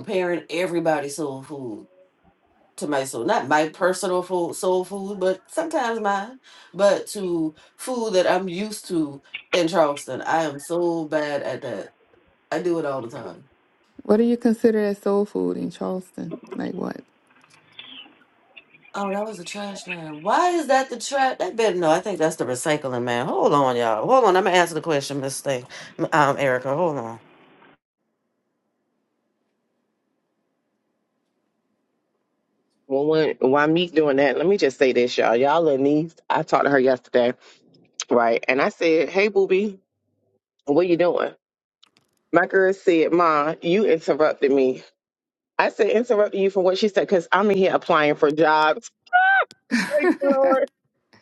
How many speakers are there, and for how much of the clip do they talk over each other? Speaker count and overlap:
3, no overlap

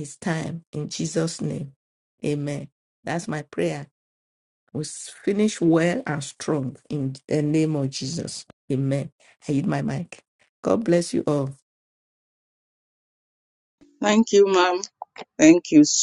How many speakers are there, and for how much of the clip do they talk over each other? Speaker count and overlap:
2, no overlap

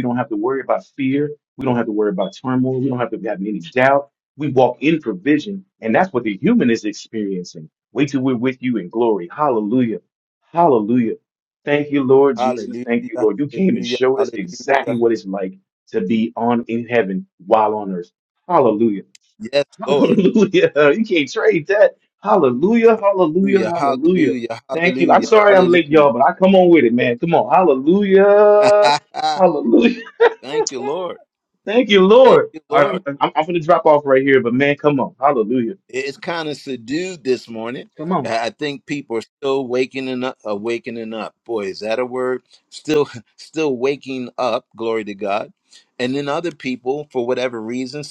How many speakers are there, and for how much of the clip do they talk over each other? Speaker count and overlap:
2, about 11%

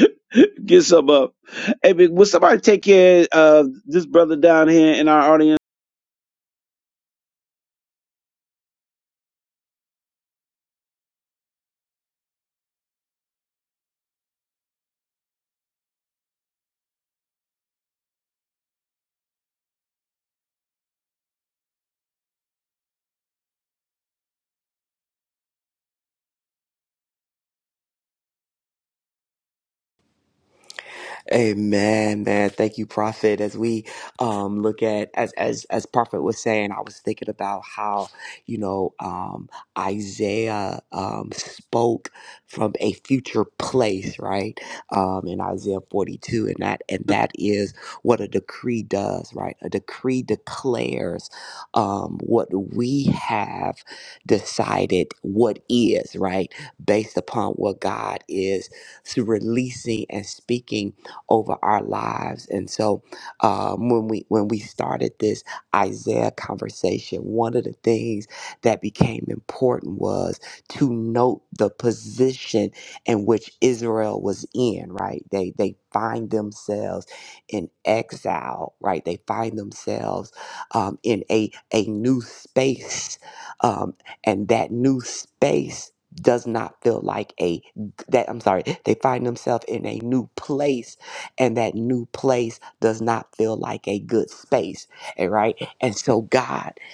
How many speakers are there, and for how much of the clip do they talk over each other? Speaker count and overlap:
2, no overlap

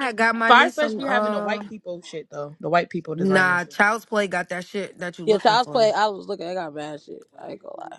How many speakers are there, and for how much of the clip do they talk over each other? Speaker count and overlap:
3, about 27%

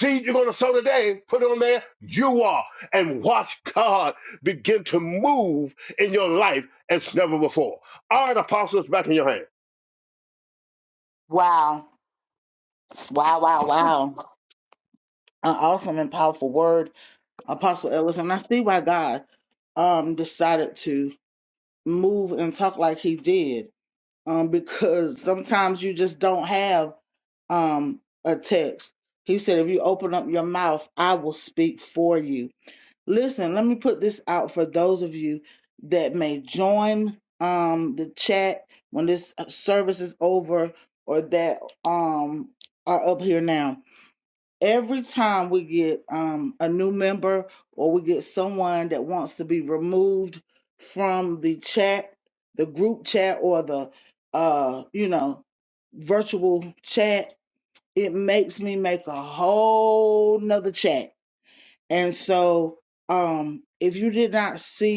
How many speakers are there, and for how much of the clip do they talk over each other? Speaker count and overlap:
2, no overlap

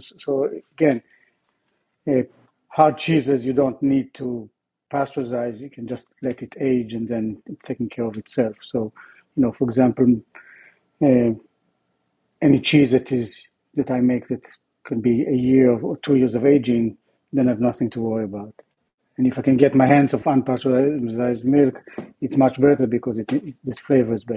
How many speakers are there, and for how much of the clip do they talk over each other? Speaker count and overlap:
1, no overlap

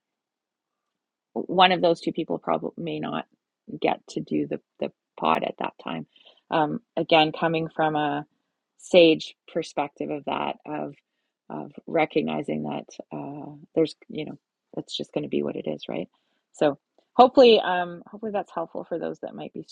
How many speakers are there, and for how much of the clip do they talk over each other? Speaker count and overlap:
1, no overlap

